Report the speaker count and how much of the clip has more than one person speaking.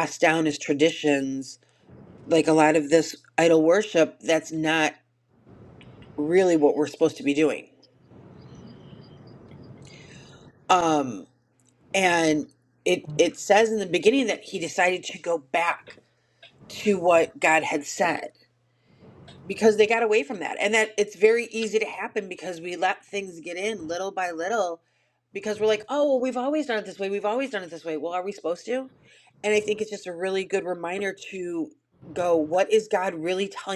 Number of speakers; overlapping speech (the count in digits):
1, no overlap